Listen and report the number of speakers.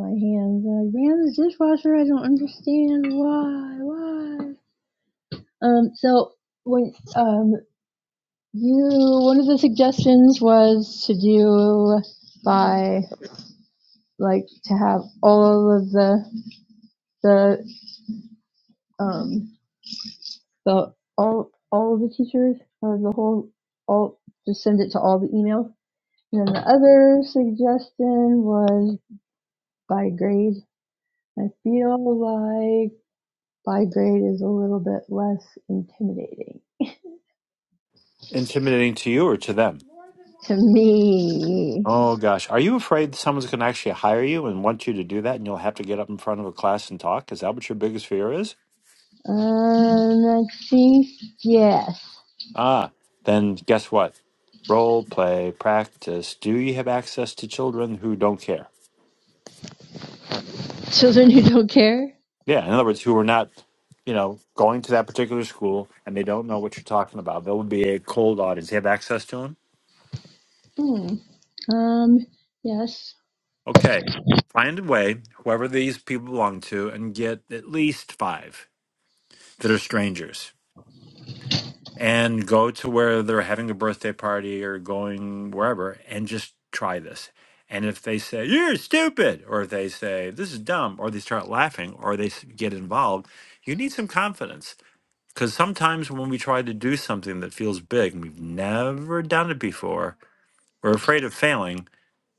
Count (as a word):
two